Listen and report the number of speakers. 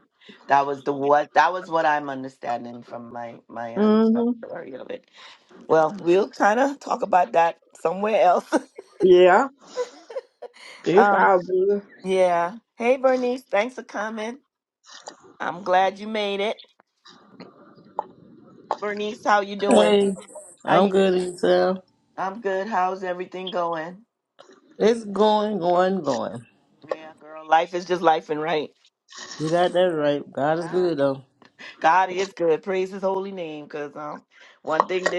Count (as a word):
three